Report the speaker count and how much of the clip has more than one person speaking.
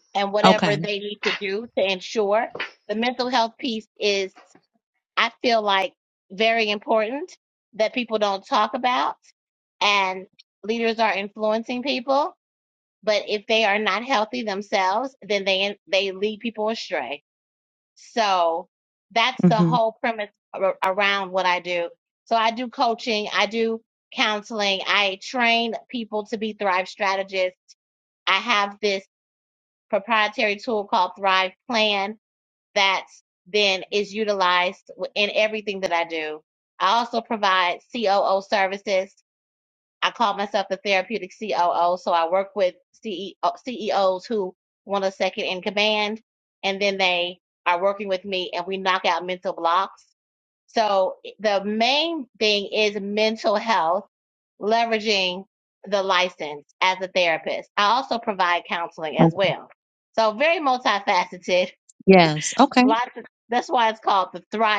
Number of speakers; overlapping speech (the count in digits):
2, about 2%